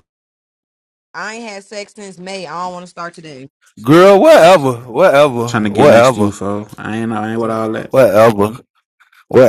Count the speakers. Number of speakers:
three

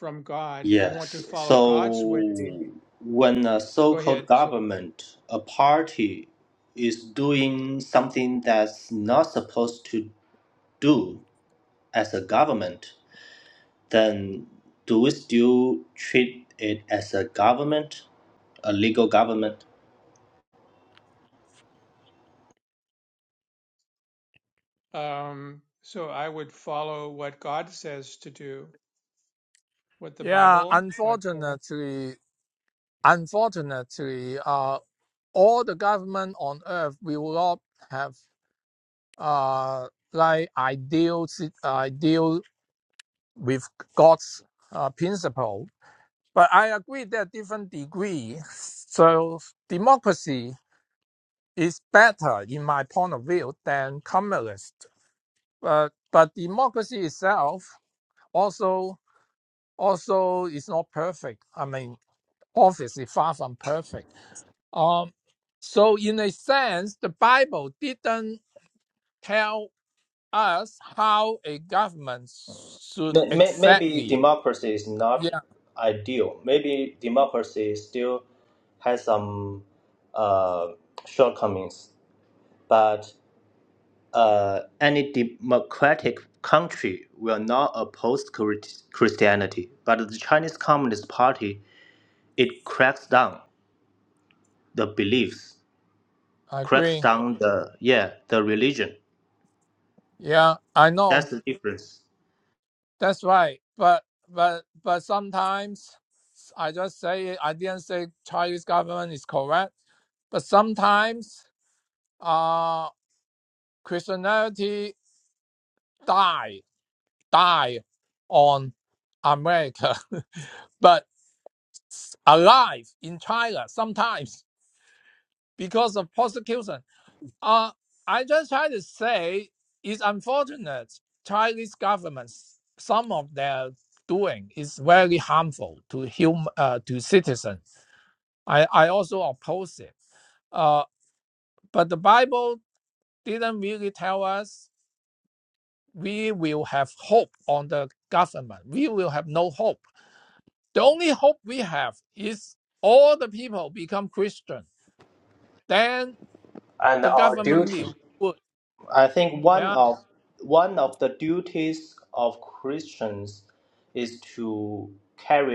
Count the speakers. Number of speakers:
three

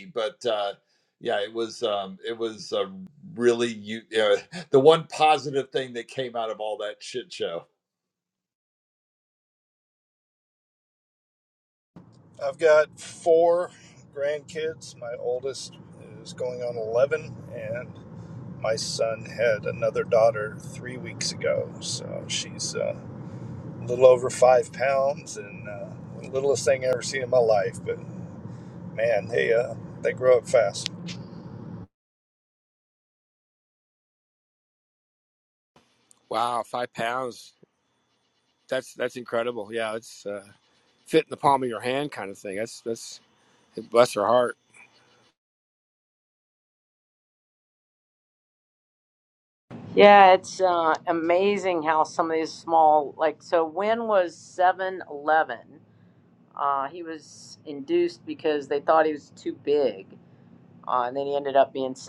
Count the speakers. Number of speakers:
four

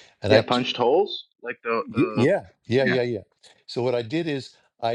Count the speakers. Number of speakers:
two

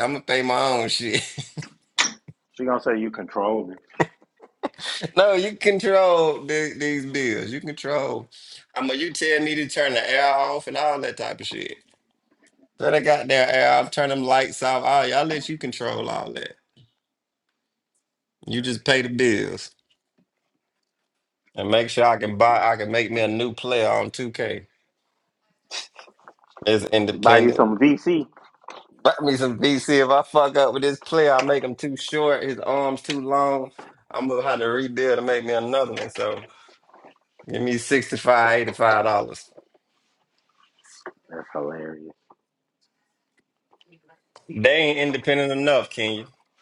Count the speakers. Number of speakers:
two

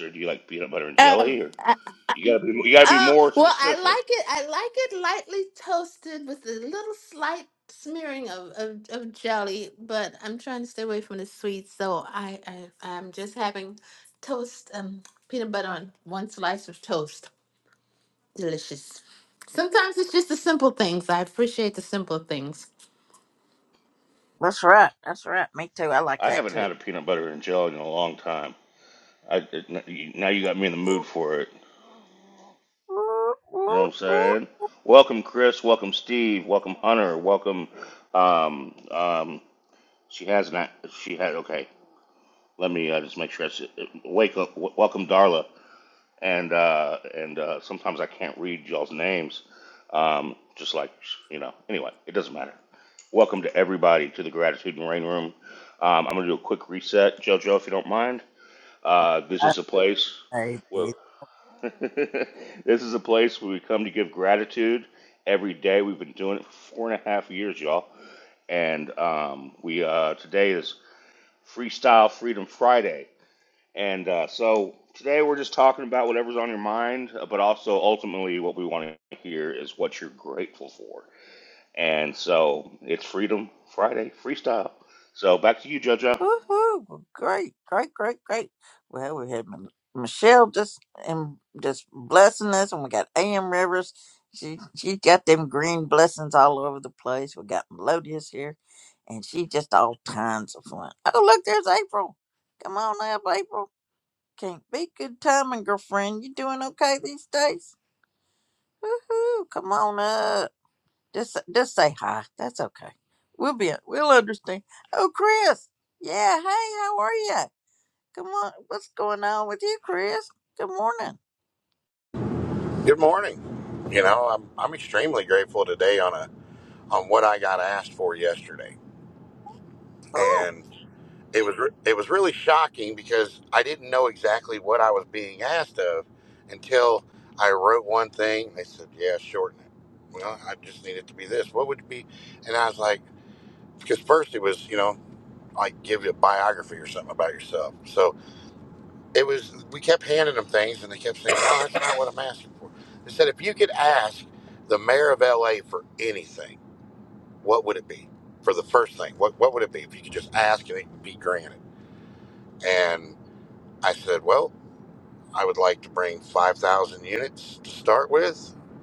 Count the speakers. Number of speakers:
four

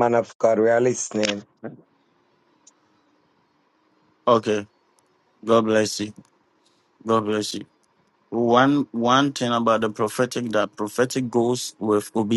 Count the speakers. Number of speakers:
two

